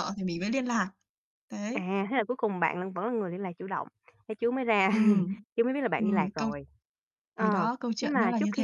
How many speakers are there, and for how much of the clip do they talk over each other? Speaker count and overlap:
2, about 18%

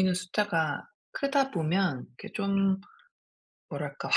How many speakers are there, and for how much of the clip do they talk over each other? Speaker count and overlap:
1, no overlap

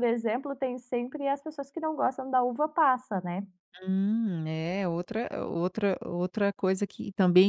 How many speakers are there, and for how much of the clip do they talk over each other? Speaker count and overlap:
2, no overlap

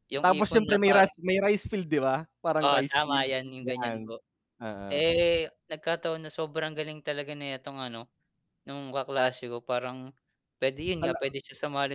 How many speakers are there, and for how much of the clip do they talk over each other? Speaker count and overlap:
2, about 19%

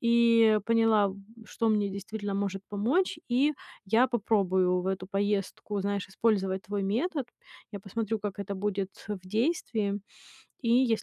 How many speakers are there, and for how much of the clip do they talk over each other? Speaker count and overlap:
1, no overlap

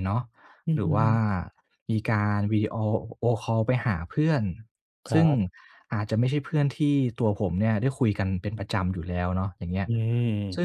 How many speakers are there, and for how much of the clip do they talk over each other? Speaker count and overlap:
2, about 6%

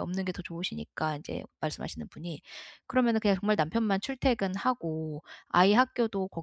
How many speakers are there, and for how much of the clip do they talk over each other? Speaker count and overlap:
1, no overlap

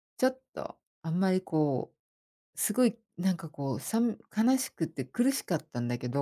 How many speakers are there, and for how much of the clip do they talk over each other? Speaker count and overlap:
1, no overlap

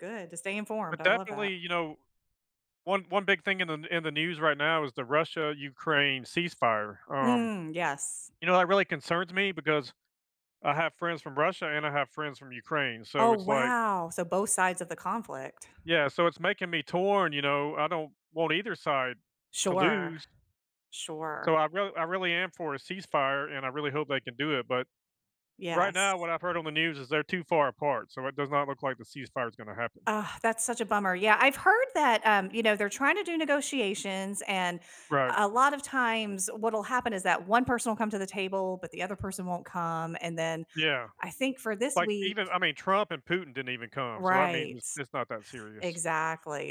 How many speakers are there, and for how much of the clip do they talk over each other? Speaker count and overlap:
2, about 7%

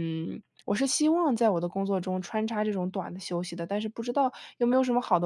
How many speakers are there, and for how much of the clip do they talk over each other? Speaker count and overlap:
1, no overlap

